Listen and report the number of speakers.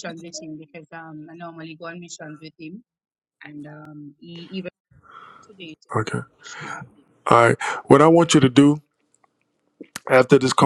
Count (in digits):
2